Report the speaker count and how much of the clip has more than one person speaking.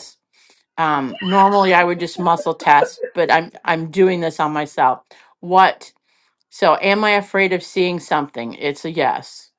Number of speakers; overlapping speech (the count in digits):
1, no overlap